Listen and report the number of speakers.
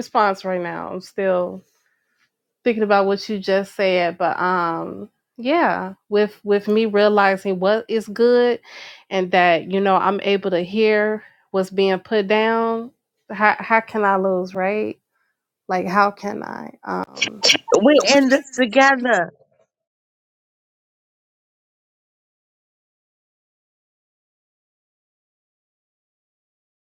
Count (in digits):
2